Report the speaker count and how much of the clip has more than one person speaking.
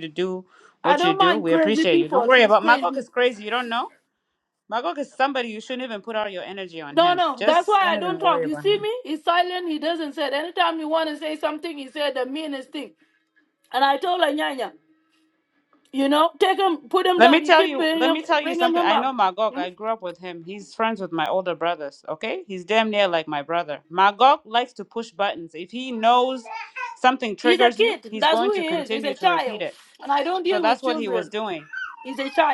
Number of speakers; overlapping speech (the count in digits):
2, about 27%